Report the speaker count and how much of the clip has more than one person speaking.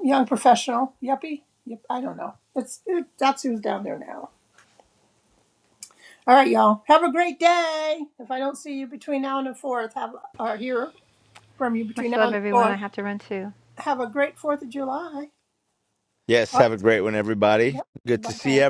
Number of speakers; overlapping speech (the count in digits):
3, about 8%